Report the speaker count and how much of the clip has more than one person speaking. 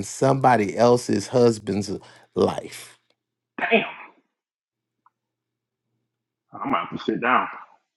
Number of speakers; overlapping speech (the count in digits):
2, no overlap